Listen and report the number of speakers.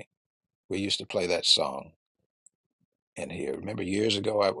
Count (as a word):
one